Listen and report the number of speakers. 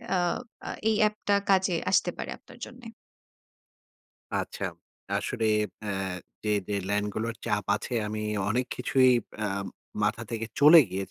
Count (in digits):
2